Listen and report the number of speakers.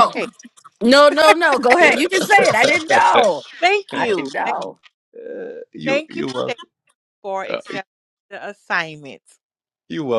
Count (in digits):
3